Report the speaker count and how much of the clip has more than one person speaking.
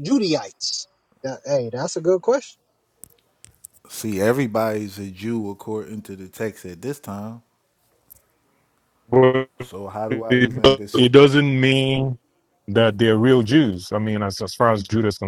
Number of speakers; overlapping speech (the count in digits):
3, about 6%